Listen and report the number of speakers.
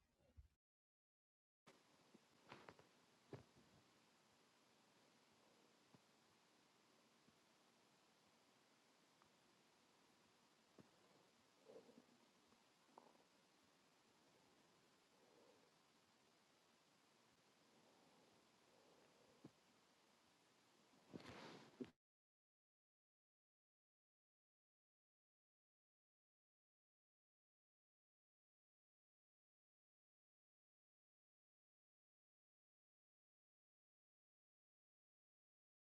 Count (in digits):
0